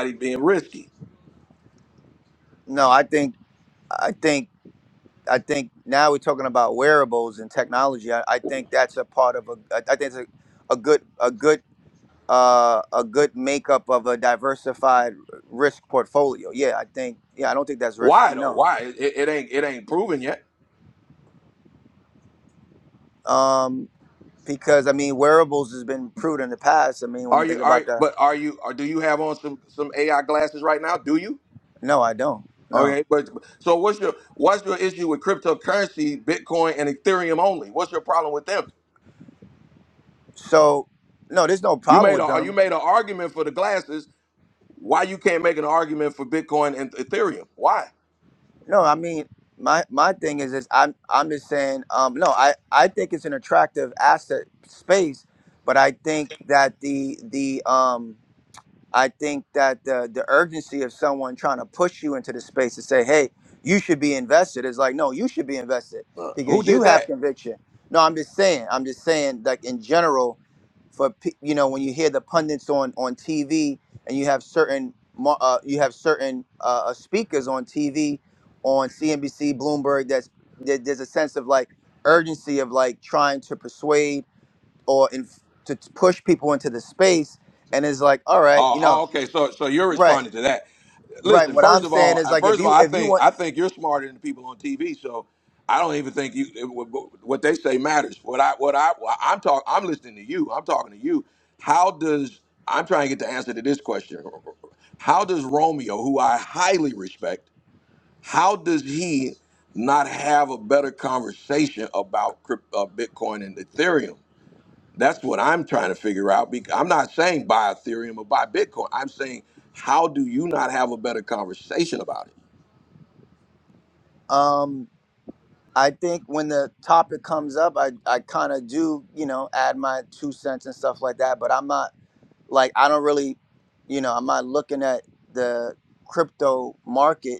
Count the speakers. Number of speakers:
two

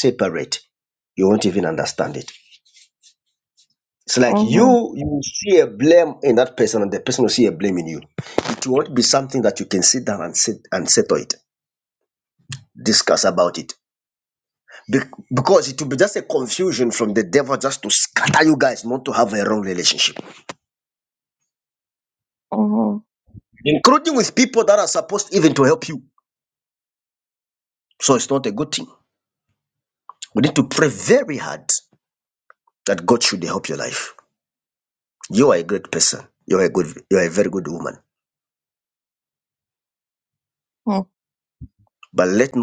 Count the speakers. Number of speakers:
two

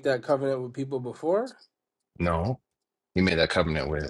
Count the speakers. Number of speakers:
two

